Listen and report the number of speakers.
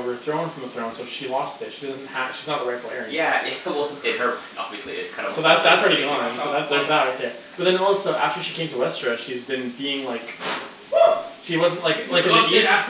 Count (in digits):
3